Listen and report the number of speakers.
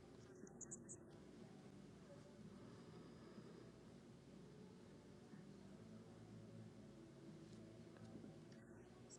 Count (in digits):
0